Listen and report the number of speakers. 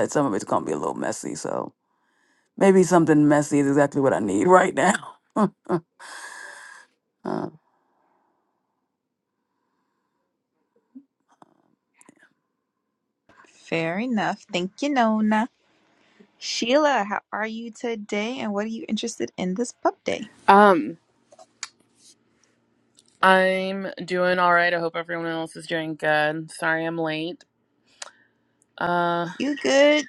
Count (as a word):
three